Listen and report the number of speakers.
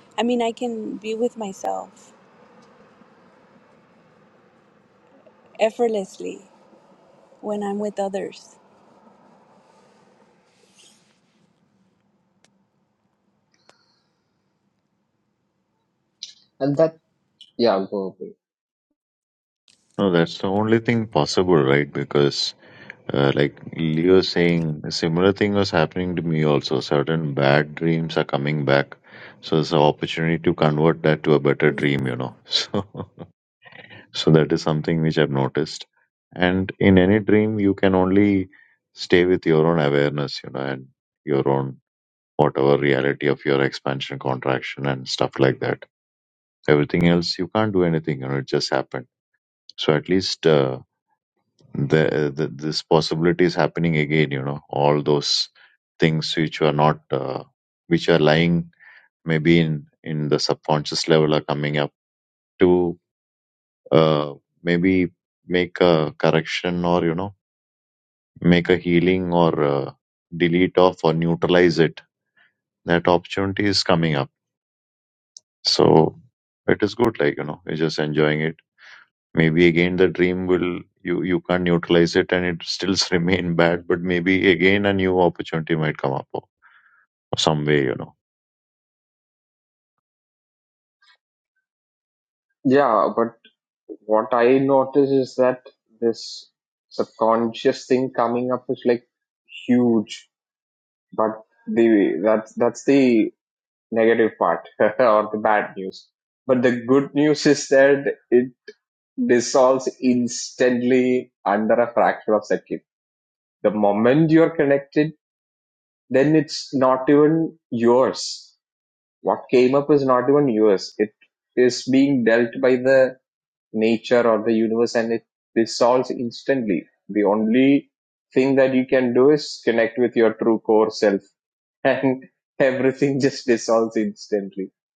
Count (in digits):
3